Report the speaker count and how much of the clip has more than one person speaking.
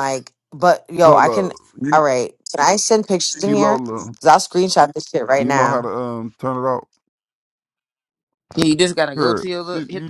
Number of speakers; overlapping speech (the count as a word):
three, about 23%